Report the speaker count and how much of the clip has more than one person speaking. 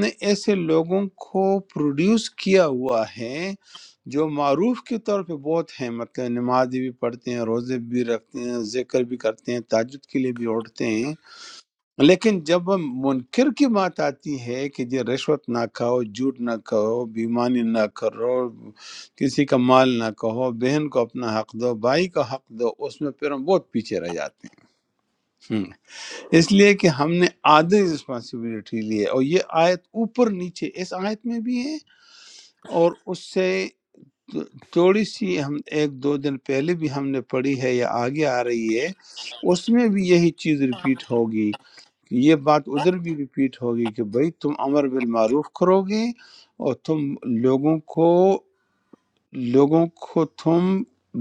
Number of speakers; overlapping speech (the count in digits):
1, no overlap